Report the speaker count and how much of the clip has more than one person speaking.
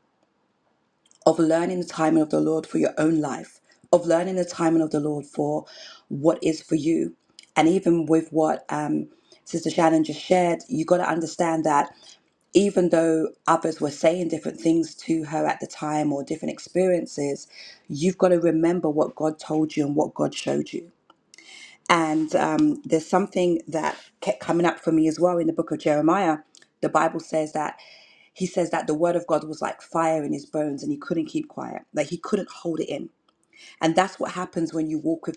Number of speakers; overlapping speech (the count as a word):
one, no overlap